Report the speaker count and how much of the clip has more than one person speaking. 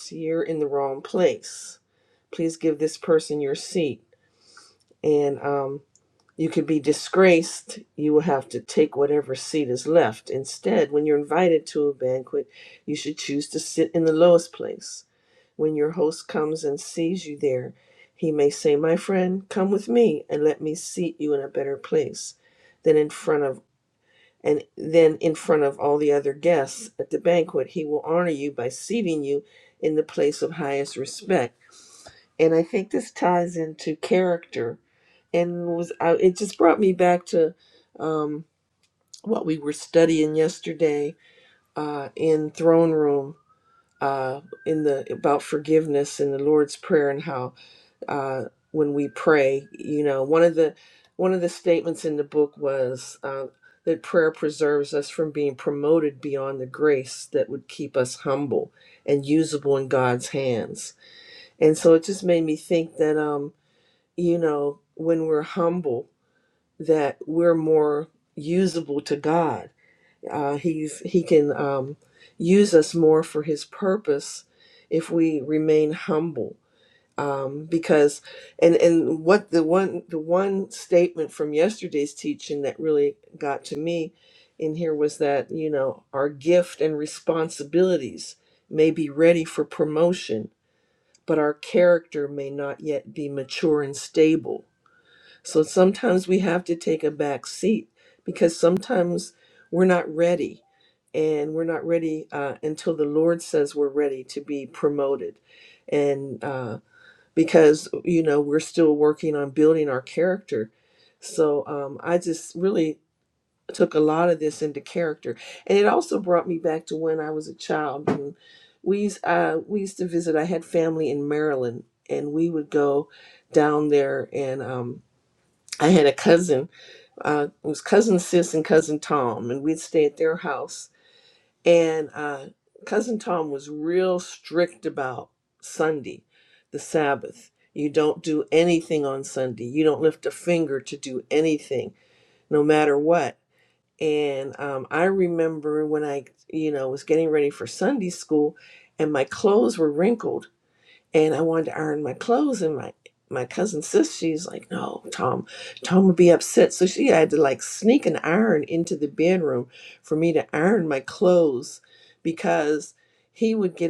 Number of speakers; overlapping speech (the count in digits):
1, no overlap